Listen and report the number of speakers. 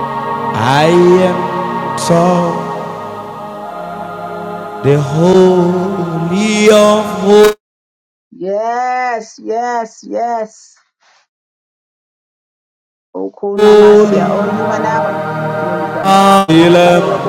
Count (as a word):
two